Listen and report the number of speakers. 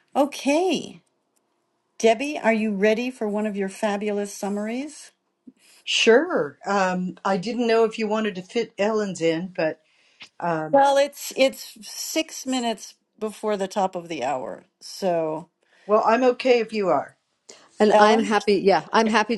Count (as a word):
three